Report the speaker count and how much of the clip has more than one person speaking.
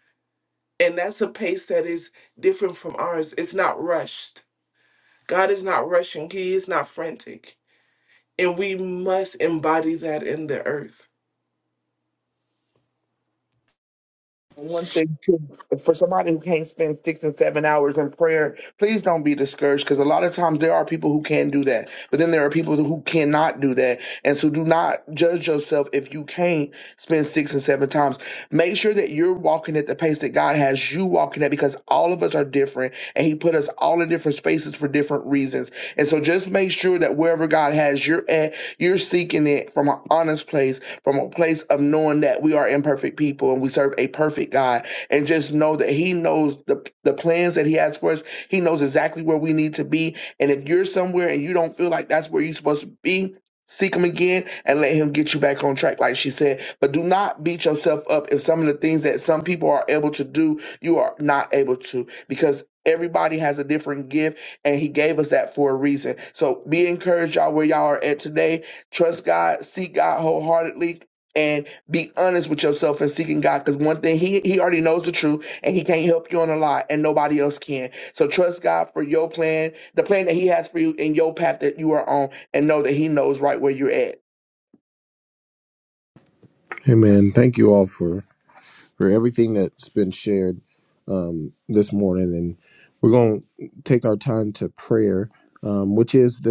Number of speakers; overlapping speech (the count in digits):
3, no overlap